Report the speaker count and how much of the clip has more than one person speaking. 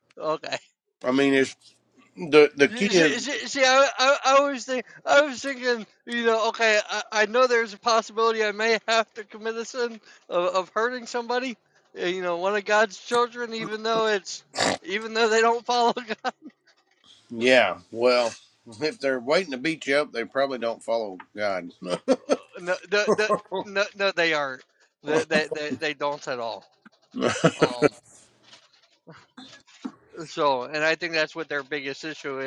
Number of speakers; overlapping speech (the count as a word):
two, about 1%